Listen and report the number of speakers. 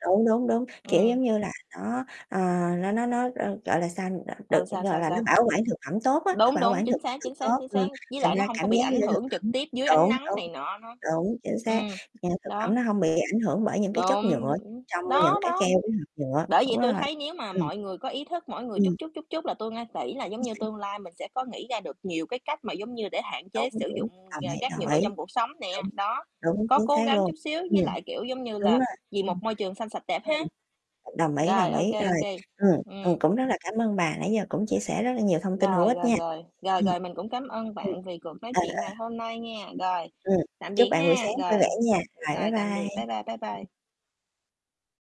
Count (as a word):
two